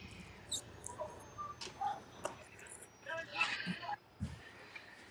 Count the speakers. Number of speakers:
zero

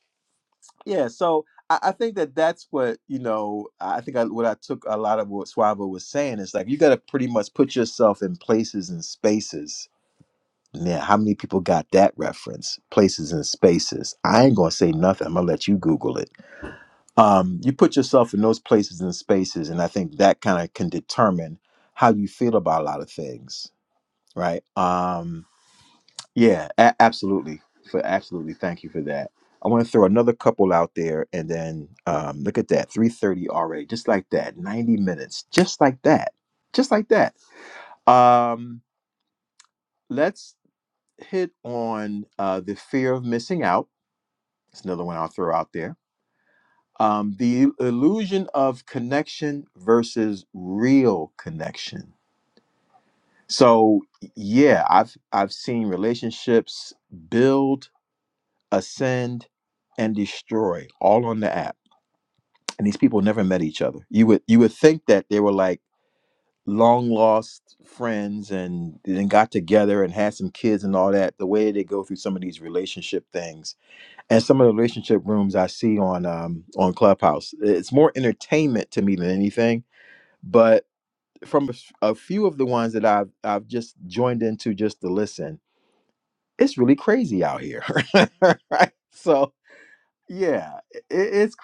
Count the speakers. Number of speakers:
one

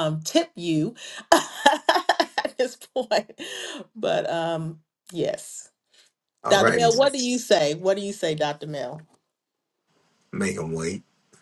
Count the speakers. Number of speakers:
two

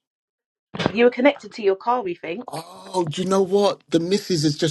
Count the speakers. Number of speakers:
two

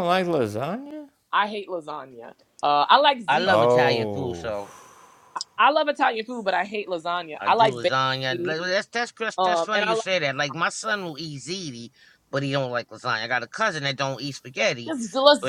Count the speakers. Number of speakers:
three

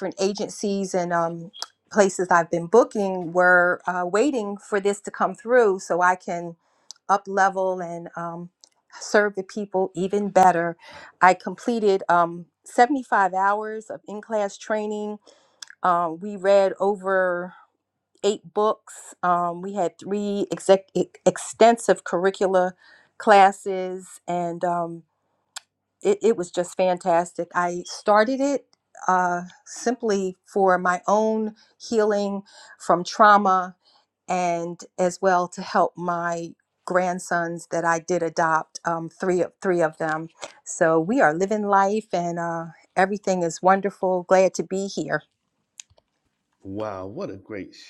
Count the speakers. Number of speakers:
two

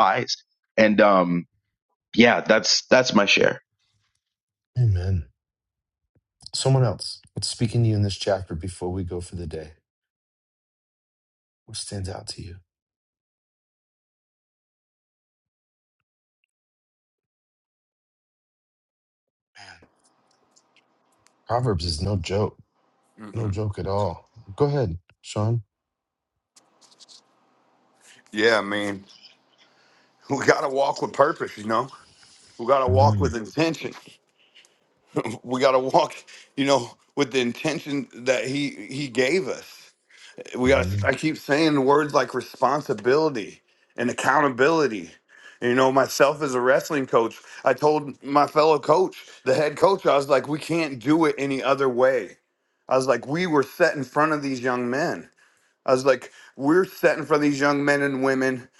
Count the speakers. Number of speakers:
three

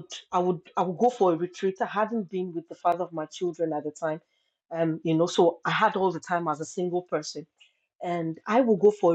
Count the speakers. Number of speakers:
one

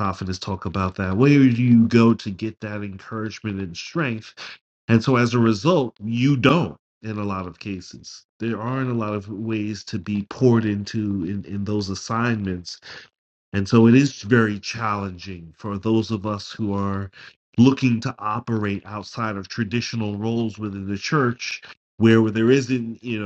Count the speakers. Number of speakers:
one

